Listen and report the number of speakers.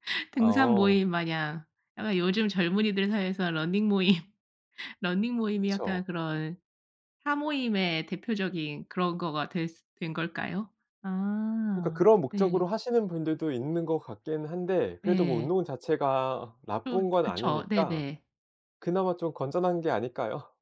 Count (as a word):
two